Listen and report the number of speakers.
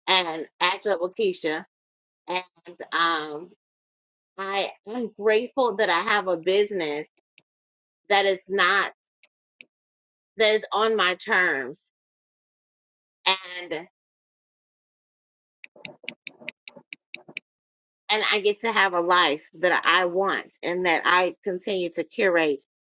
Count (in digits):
1